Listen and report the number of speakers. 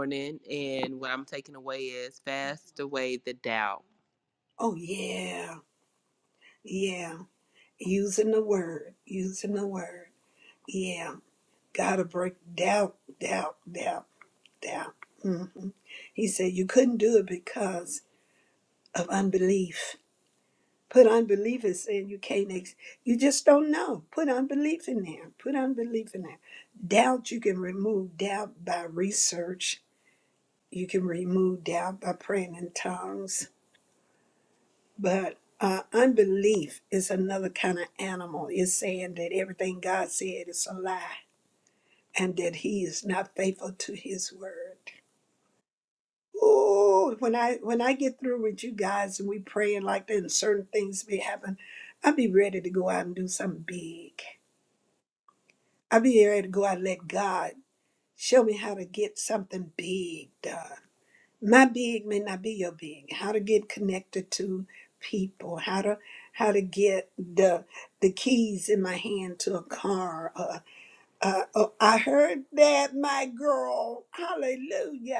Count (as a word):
two